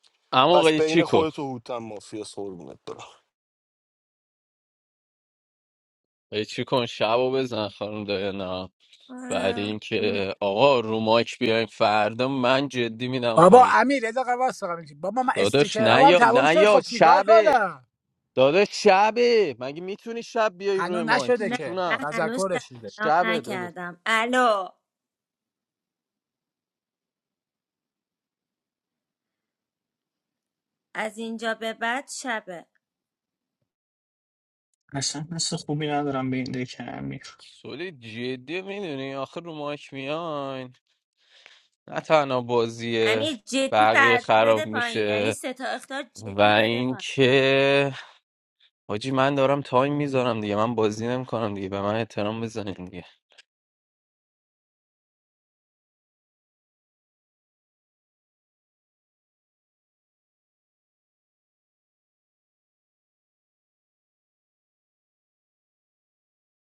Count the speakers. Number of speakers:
5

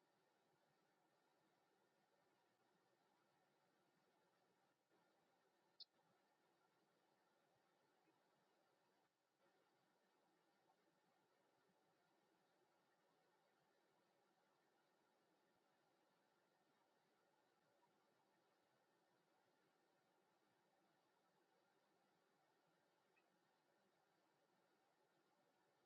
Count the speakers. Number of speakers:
0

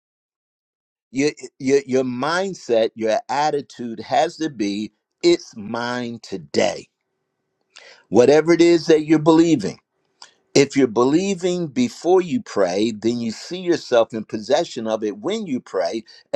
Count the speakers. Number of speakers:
1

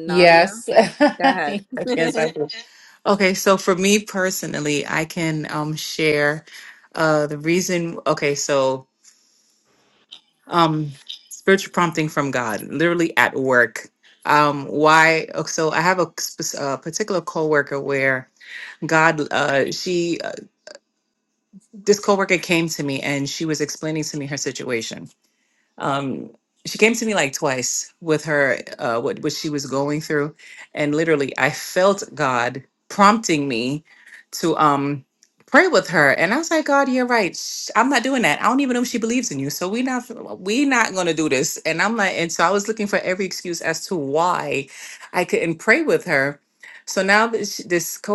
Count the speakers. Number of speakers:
2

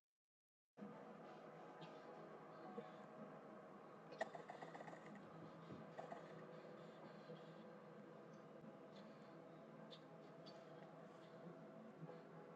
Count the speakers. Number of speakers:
0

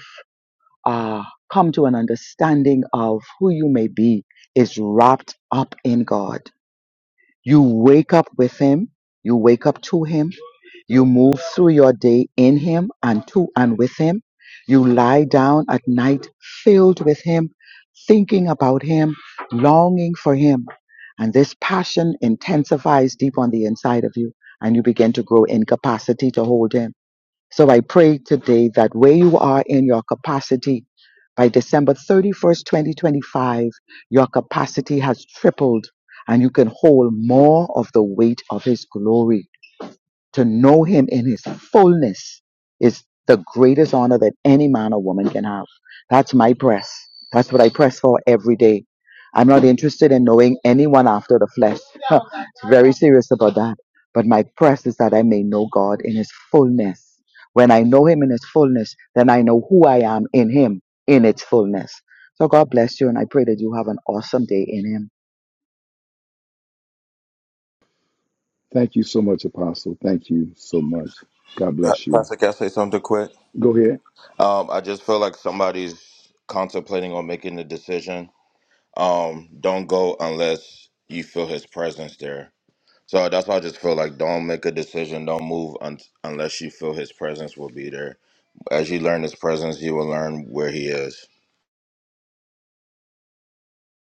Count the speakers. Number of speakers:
3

